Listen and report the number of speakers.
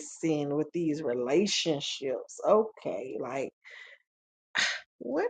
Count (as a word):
one